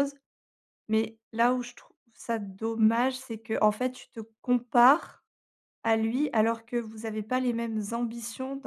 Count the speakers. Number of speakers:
1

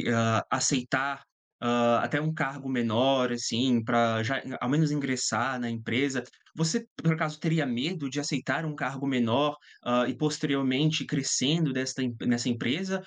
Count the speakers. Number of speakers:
1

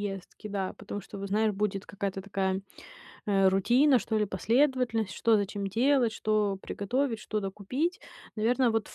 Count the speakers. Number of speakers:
1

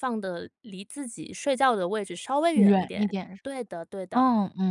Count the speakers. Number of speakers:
2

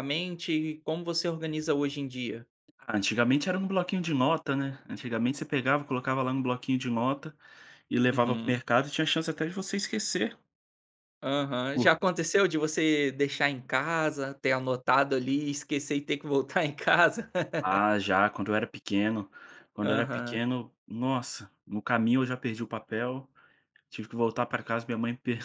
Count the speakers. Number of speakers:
2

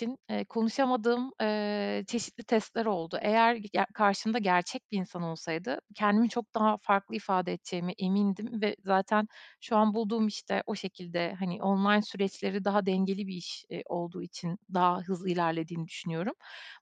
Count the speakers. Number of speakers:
1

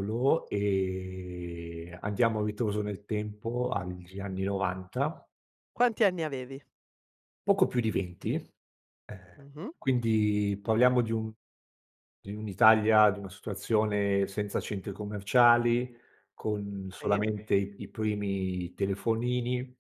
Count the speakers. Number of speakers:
2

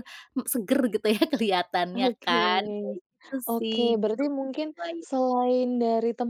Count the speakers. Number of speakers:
2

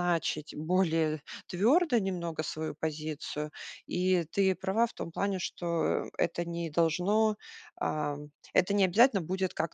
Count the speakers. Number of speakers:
1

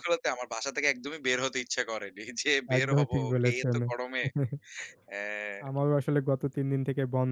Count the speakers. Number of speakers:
2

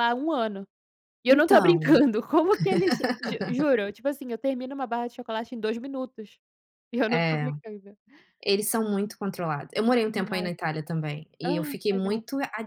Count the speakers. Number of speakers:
2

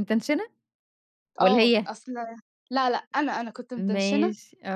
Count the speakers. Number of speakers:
2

